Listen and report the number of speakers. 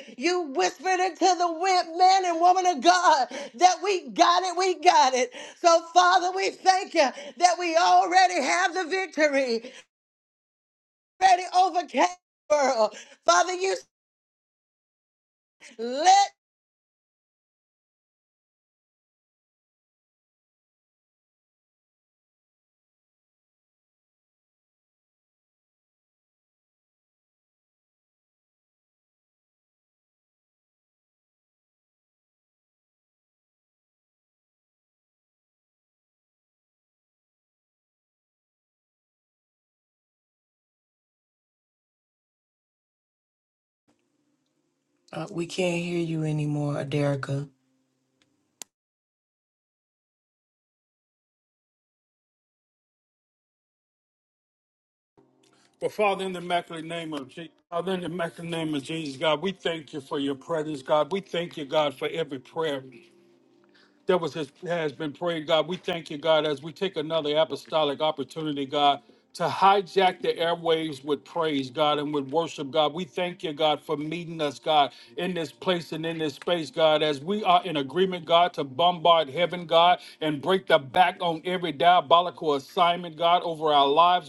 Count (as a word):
three